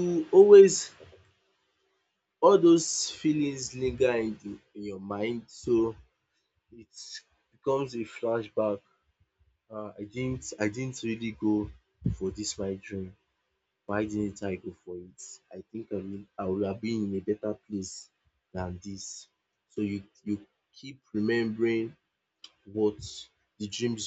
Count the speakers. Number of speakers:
1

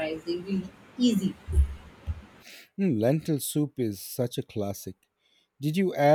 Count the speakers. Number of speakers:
2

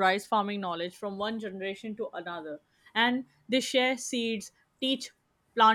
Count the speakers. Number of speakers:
1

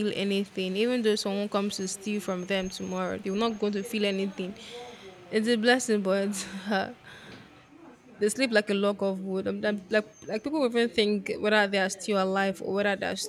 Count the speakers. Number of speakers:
1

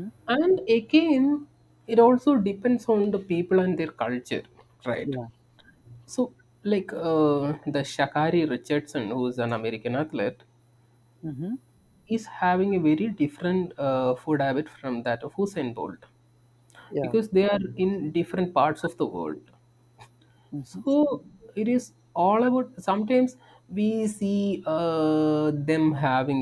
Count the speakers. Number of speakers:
2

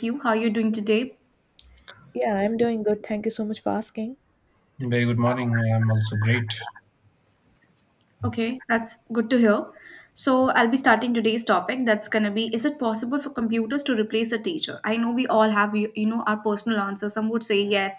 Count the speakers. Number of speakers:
3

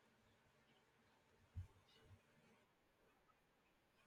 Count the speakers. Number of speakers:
0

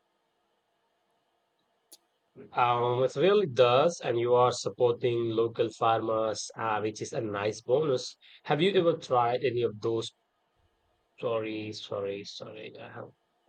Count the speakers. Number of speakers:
1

